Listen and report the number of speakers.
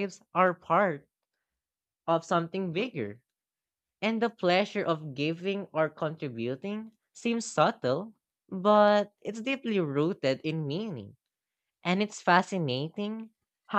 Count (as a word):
one